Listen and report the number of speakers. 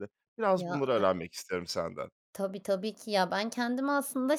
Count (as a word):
two